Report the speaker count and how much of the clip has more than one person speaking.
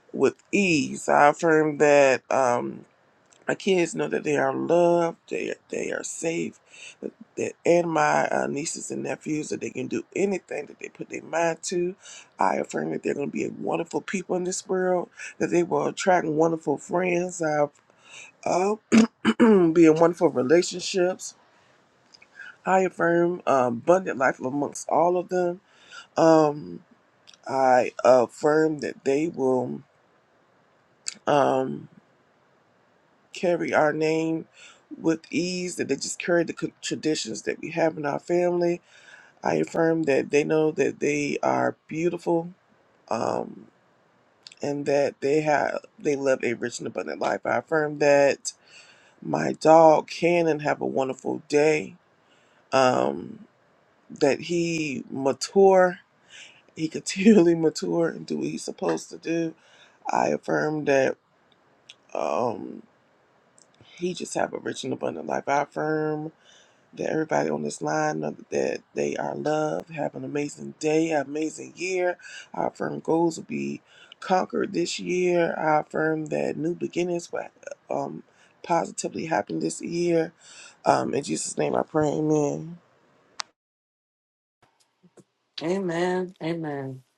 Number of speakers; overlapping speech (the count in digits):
2, no overlap